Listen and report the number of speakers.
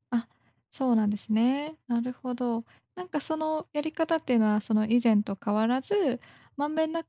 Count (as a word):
one